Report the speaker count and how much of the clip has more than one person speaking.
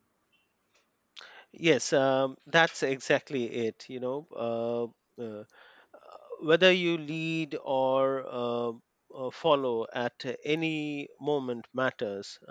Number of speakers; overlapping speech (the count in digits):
1, no overlap